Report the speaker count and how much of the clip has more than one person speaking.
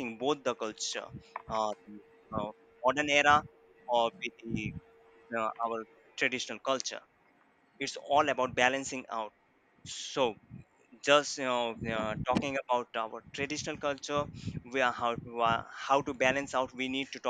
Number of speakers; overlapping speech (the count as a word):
one, no overlap